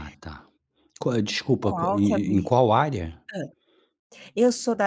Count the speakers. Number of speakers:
2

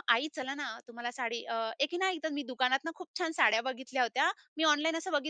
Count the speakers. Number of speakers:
1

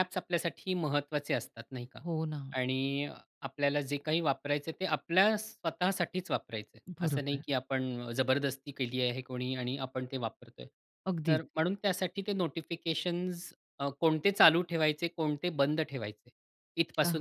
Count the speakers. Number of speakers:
2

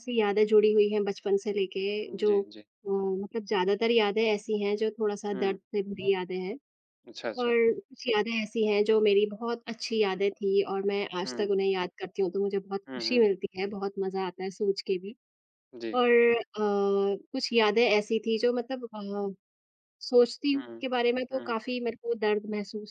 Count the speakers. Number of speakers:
2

